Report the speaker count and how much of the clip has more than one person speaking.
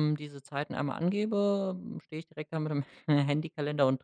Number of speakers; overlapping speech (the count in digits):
1, no overlap